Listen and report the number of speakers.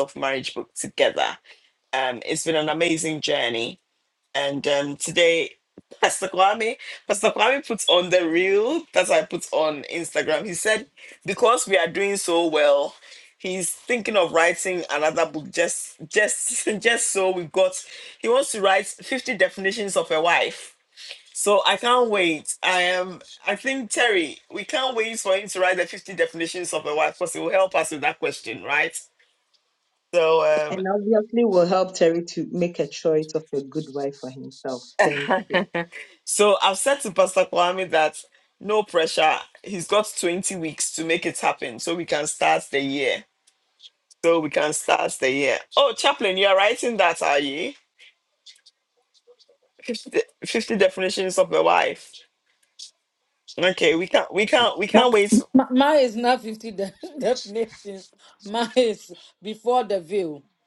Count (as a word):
three